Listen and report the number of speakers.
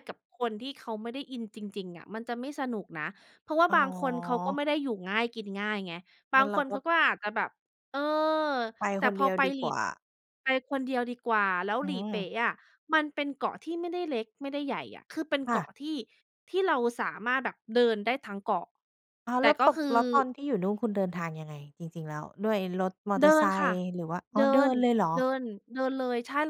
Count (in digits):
2